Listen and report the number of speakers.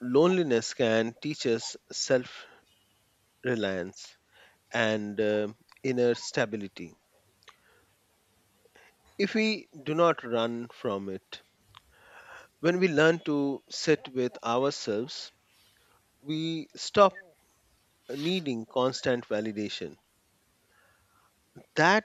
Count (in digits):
1